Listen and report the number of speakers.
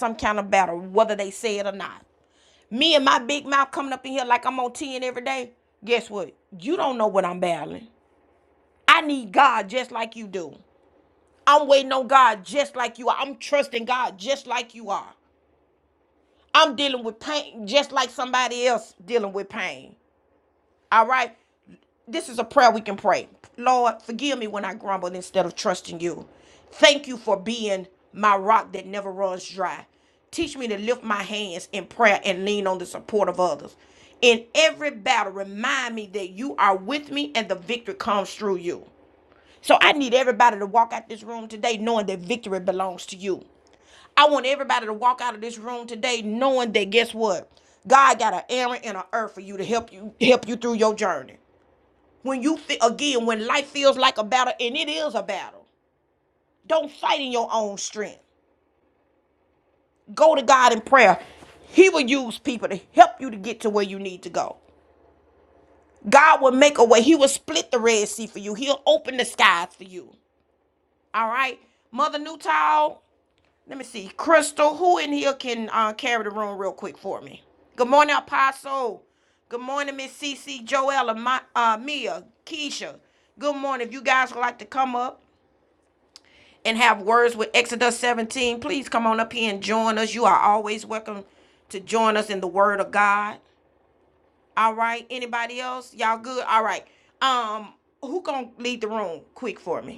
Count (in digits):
1